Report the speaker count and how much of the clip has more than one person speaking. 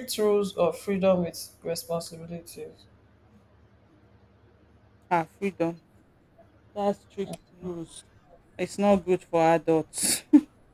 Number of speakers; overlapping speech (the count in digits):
2, no overlap